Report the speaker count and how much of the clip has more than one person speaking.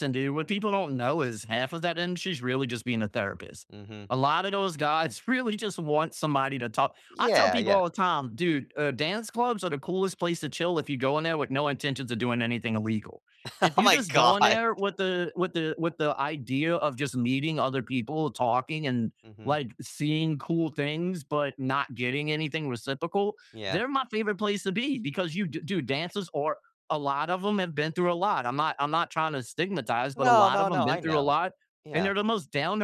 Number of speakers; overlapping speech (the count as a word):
two, about 10%